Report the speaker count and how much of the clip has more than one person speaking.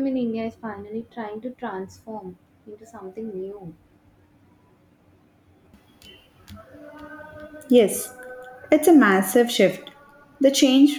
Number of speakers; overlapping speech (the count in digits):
2, no overlap